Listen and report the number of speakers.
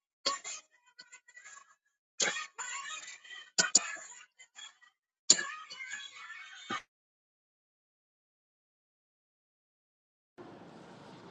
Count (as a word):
zero